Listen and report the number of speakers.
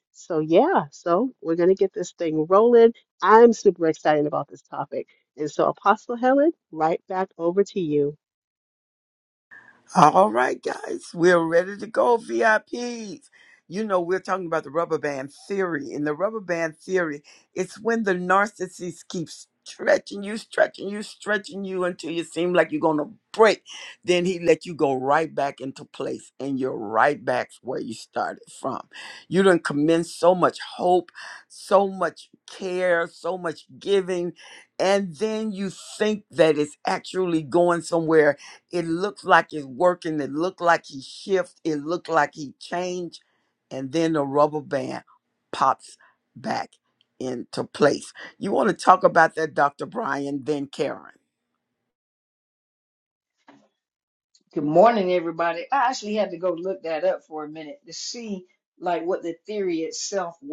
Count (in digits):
3